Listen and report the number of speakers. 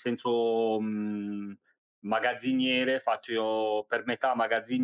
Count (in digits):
1